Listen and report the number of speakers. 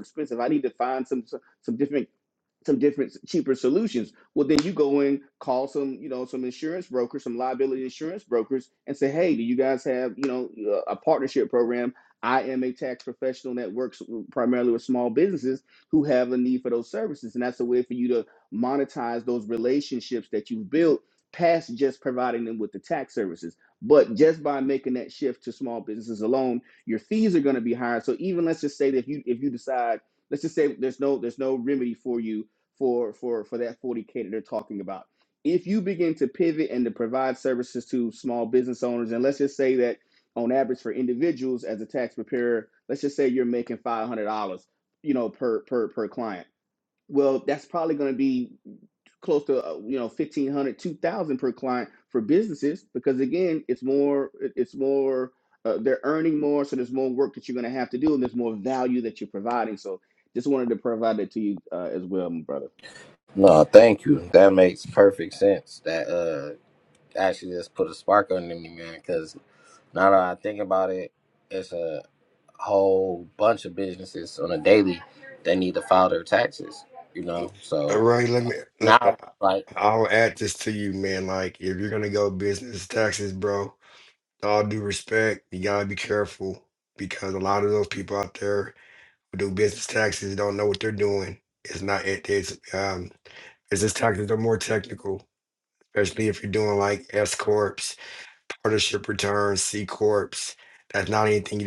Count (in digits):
3